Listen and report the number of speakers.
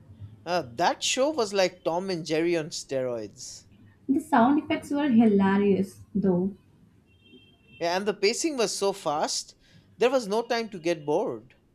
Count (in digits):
2